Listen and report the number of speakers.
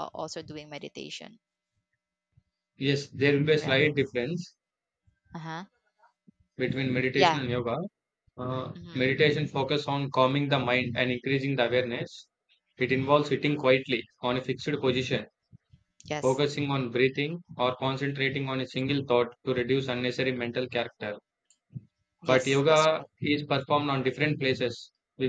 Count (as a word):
two